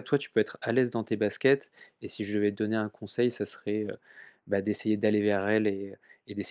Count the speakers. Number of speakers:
one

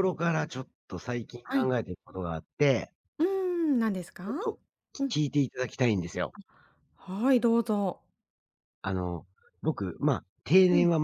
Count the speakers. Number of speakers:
two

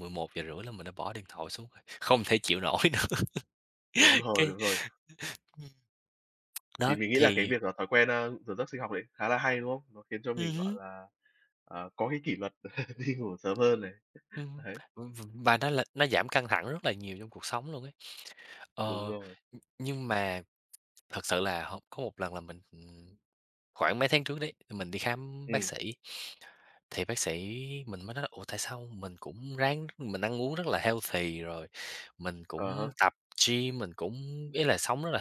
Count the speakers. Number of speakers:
two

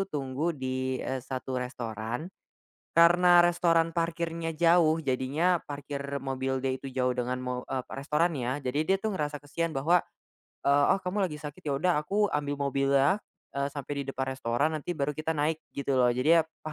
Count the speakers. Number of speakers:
one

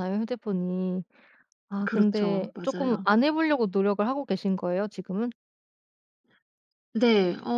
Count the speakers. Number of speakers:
two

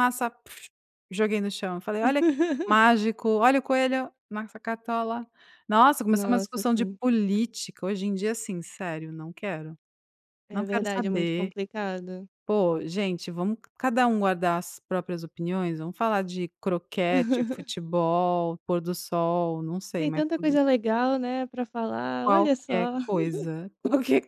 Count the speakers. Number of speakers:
two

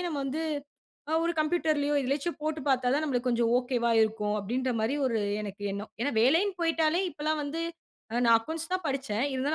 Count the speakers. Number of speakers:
one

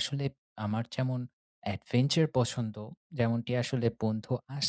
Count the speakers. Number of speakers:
one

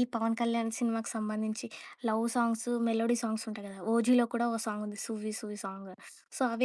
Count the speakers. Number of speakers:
one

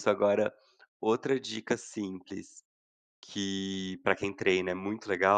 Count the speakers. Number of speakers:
one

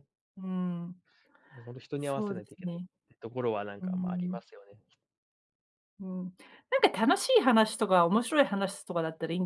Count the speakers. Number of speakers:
two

